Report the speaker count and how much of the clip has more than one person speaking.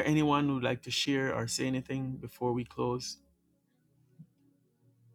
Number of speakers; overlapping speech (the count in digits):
1, no overlap